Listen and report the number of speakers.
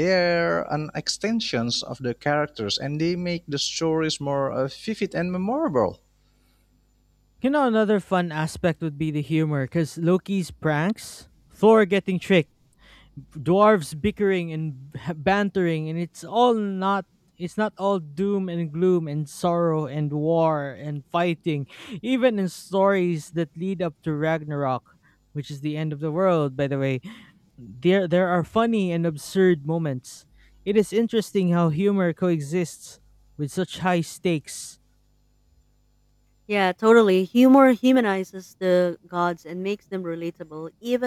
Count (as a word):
three